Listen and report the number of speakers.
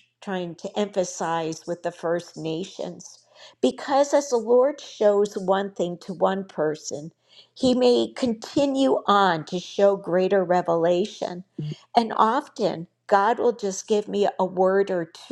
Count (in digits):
1